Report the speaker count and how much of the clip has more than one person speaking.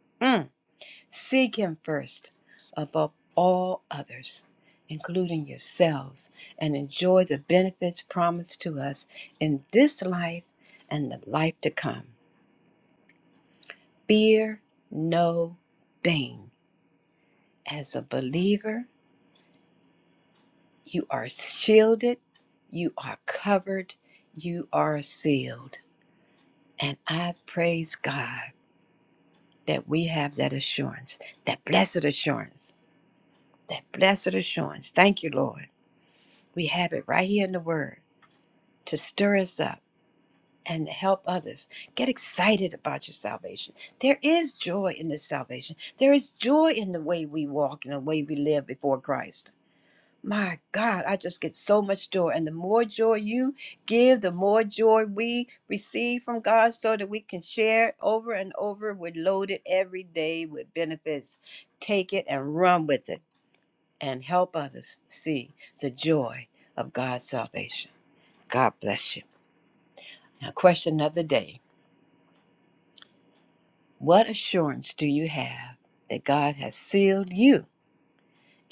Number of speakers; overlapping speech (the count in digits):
1, no overlap